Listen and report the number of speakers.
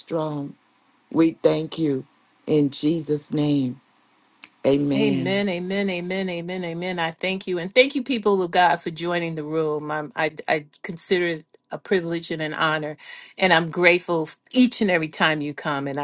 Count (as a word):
two